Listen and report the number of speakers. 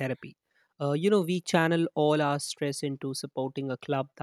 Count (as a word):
one